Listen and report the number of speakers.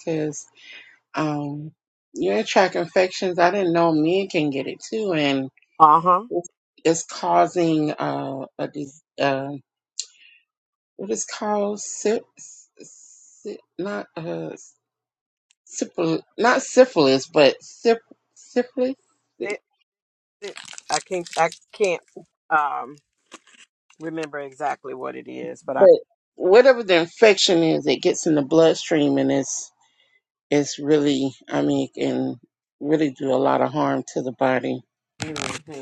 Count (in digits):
2